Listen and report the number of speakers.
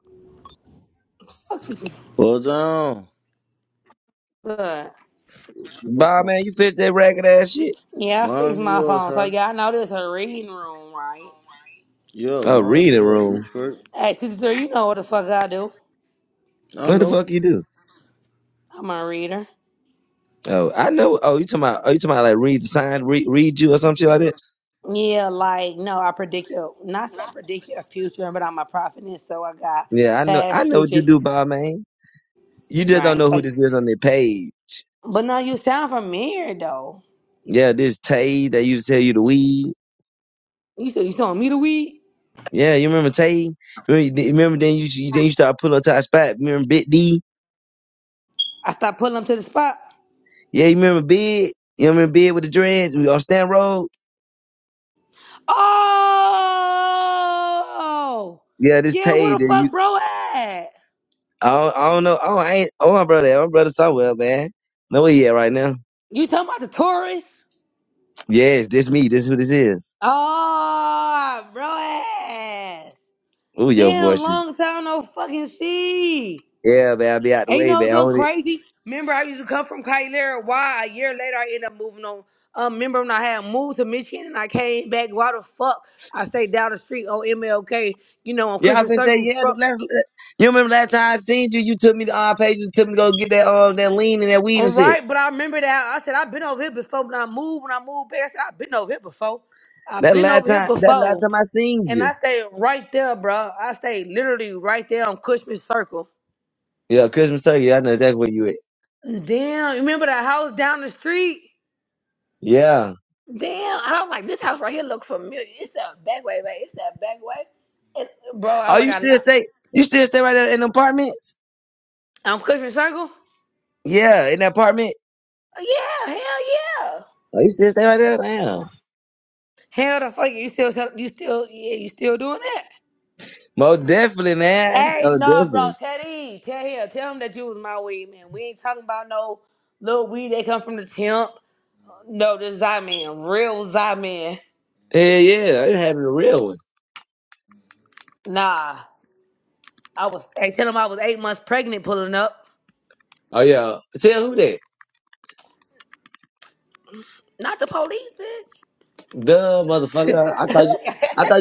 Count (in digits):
3